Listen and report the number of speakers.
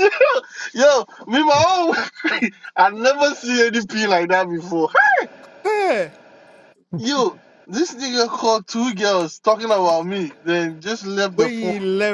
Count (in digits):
2